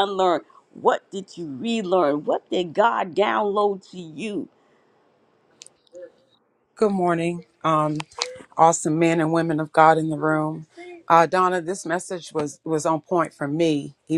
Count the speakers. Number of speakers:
2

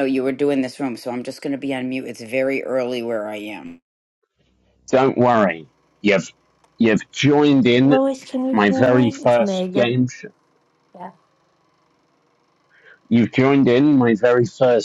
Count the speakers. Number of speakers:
3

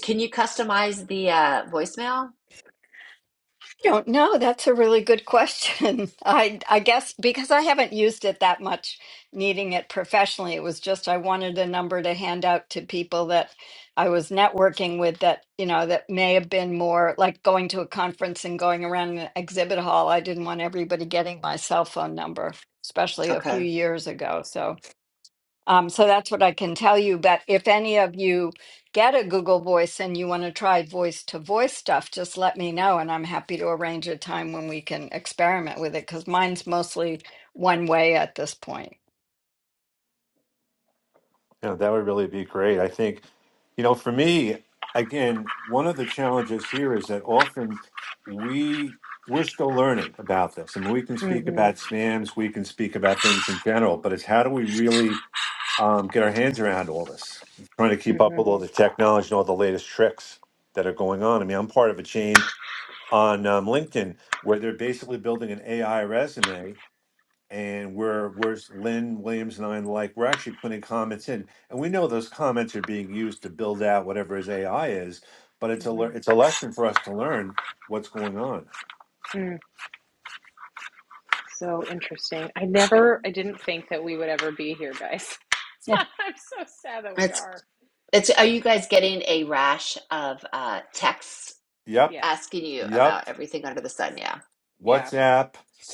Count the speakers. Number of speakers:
4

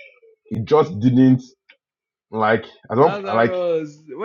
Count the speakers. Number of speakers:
2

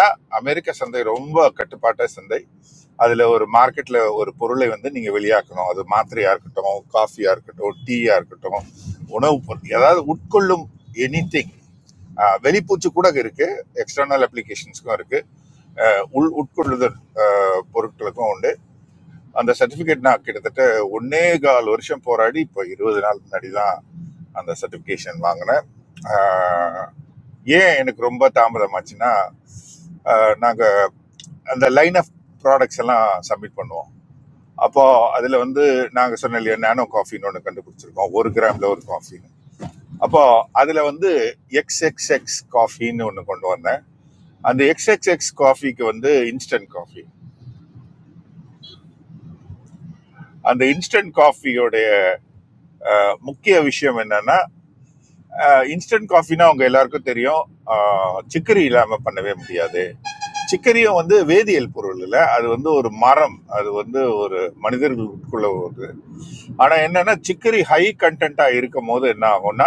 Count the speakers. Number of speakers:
1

